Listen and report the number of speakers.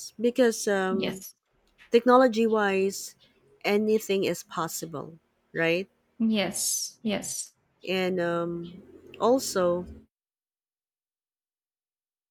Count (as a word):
two